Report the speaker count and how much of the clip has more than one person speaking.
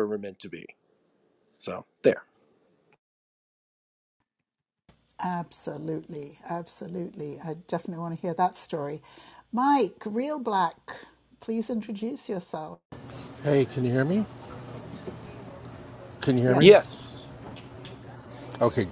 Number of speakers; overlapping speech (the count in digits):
3, about 3%